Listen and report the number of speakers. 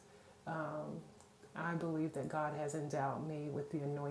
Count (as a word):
one